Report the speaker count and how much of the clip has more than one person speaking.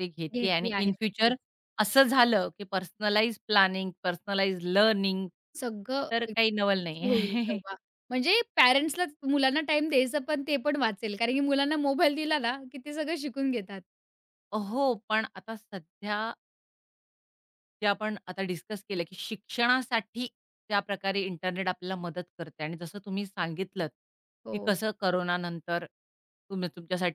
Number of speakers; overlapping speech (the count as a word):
two, about 6%